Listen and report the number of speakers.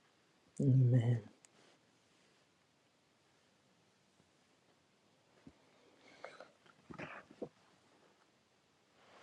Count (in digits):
0